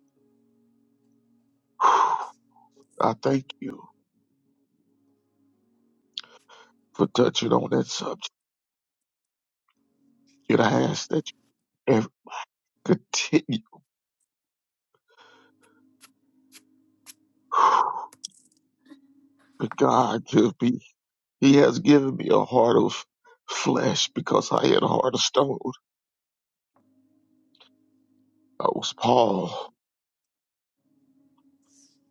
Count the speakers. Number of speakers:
1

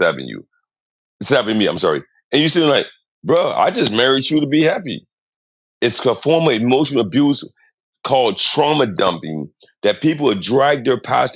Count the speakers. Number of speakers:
1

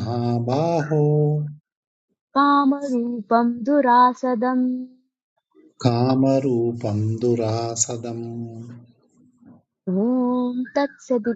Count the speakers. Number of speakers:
2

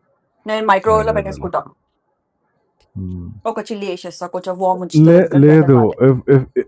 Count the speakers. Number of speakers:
2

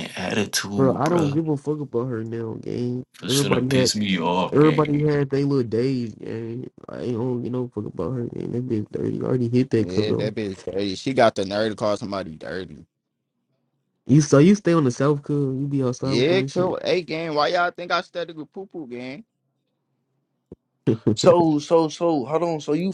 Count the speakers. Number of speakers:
4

